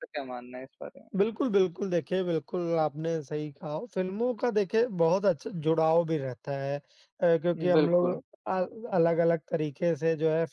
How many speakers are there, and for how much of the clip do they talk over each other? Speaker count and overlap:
2, about 6%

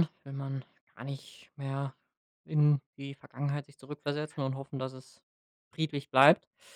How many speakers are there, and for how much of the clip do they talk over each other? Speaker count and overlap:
1, no overlap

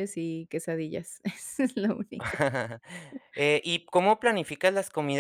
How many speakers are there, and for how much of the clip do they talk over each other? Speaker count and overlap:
2, no overlap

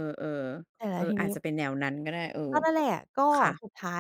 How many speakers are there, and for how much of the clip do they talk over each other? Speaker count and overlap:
2, about 8%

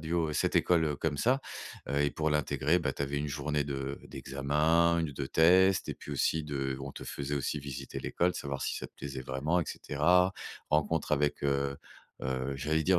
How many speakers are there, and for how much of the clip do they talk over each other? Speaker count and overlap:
1, no overlap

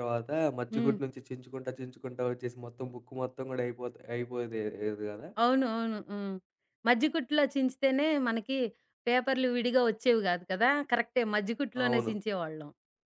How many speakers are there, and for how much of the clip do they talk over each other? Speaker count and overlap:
2, about 5%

